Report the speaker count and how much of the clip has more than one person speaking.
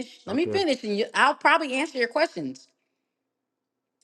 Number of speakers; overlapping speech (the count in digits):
1, no overlap